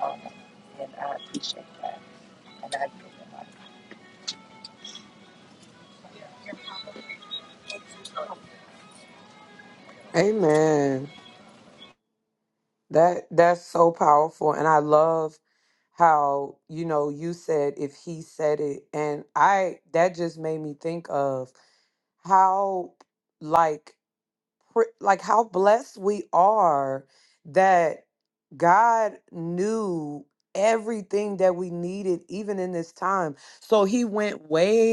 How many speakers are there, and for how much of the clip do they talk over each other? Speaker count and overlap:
two, no overlap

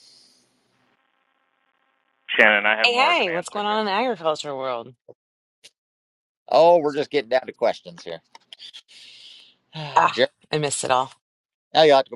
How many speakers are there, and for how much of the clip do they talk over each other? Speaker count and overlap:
three, about 10%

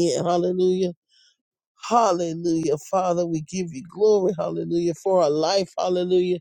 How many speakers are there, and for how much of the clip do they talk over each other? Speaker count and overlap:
one, no overlap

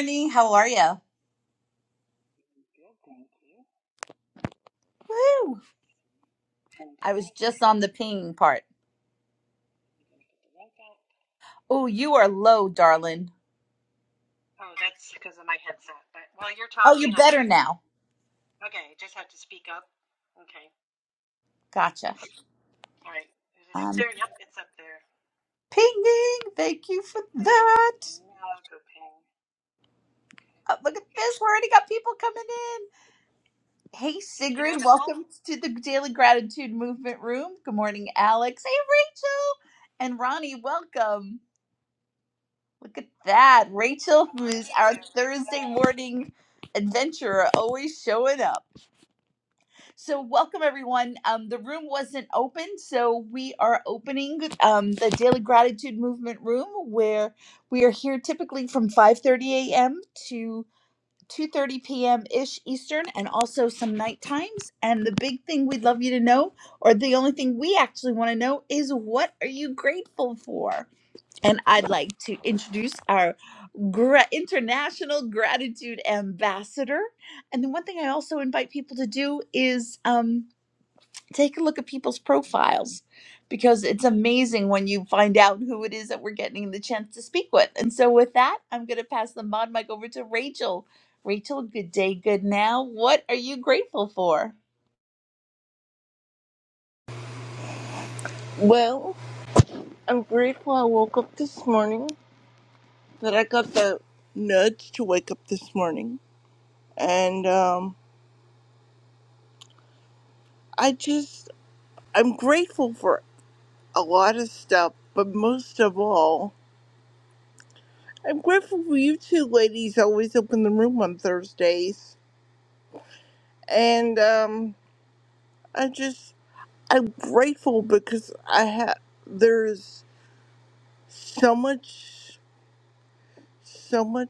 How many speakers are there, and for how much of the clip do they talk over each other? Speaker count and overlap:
three, about 3%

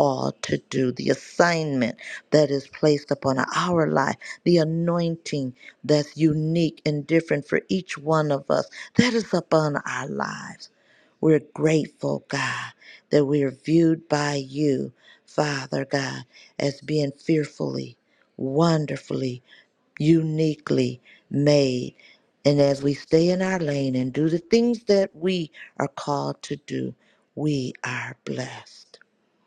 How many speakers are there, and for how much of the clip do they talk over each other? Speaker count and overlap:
one, no overlap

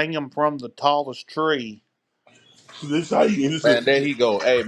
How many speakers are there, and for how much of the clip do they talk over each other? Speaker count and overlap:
three, about 4%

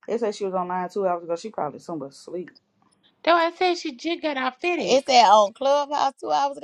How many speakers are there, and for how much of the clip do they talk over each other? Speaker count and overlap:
three, about 4%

